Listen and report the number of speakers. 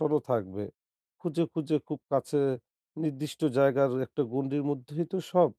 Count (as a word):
one